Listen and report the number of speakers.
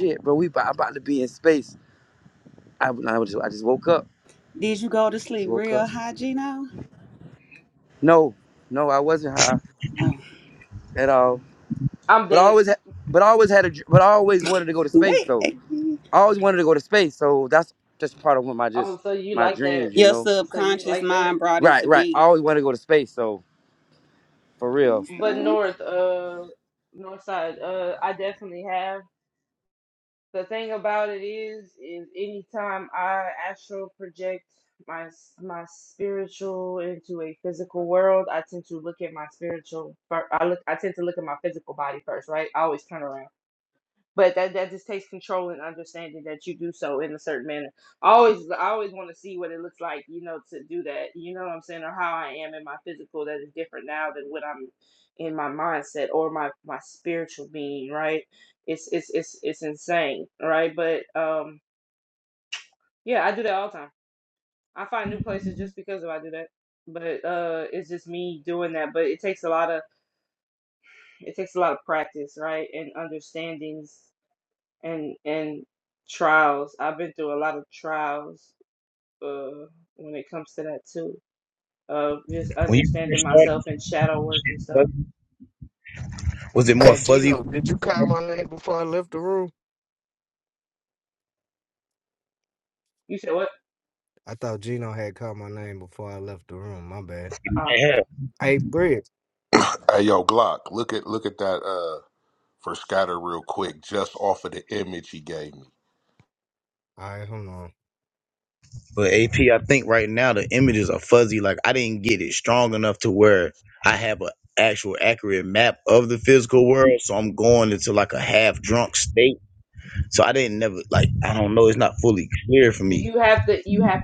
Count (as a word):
six